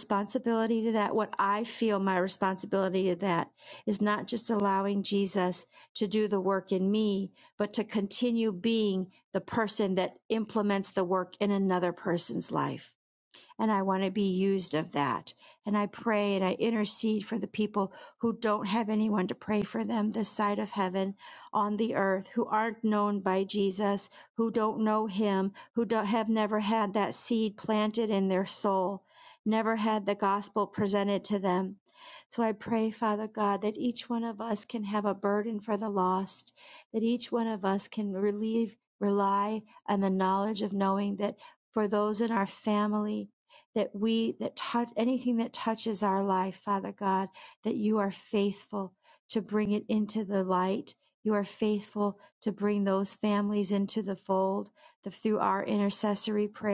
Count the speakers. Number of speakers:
one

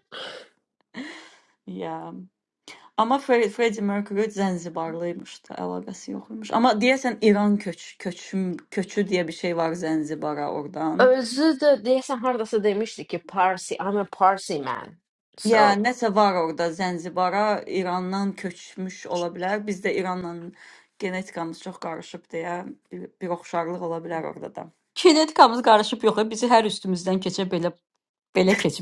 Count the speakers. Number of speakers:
three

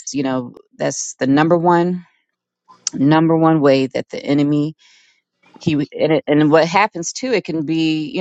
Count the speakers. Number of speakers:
one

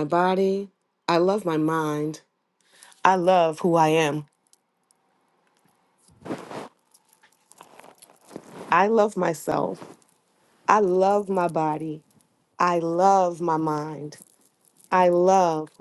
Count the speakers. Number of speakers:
one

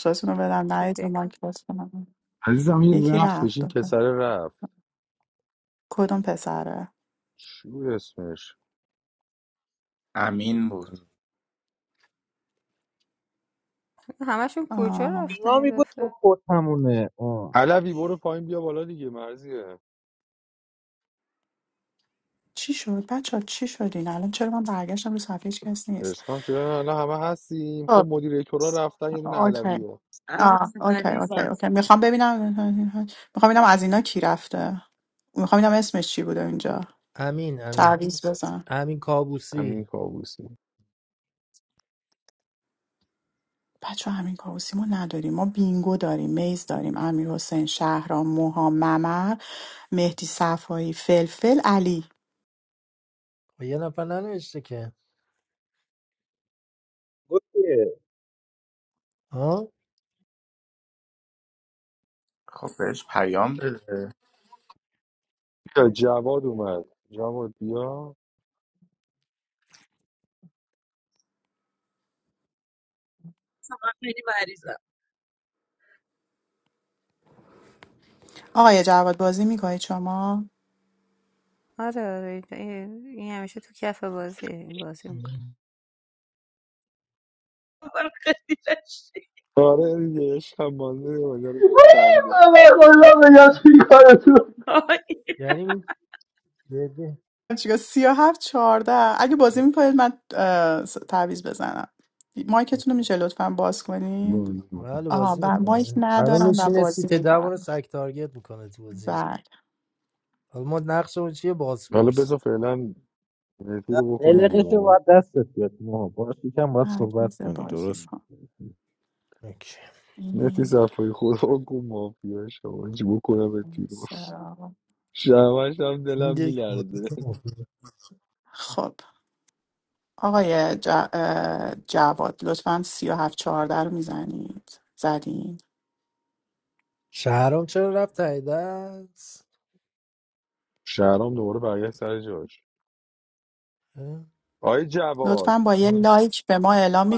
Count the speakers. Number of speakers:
eight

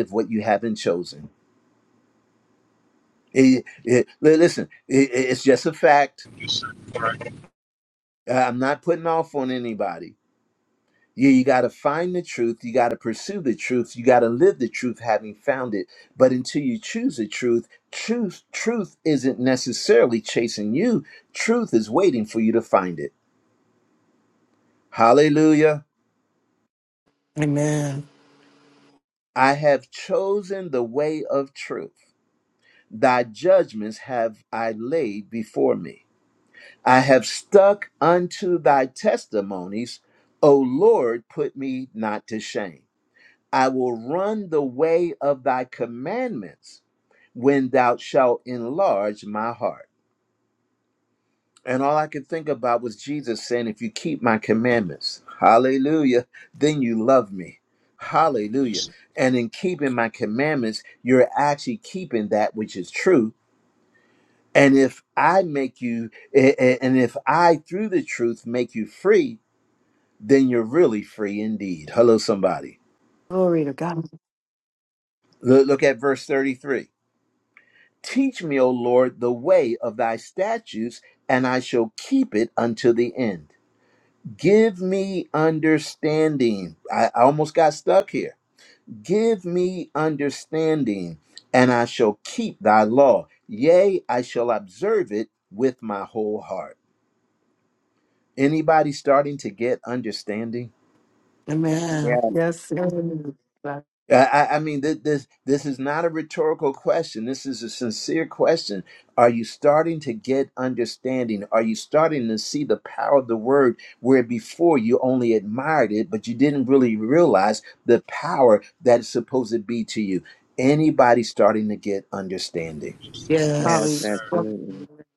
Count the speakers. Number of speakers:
five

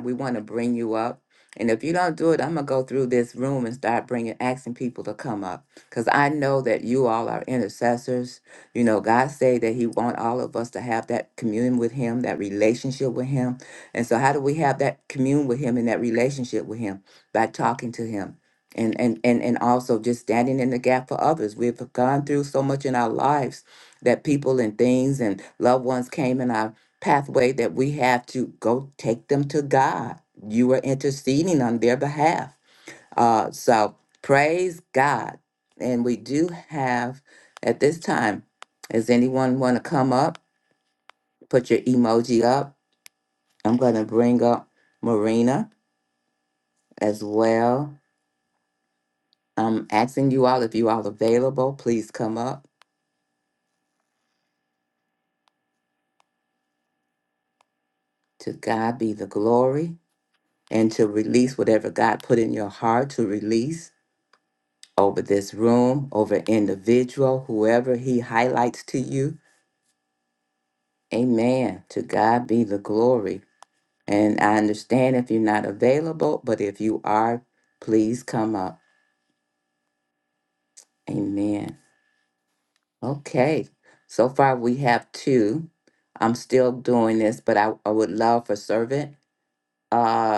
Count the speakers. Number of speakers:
one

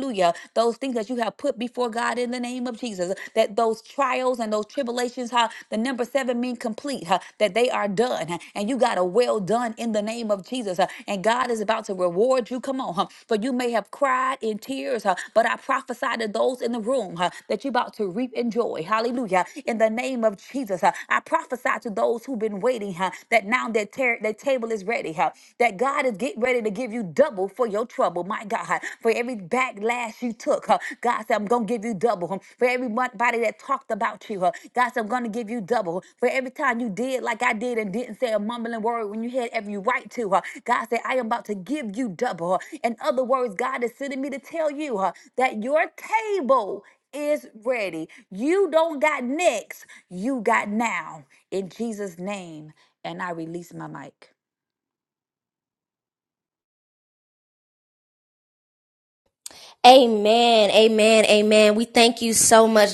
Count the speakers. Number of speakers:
two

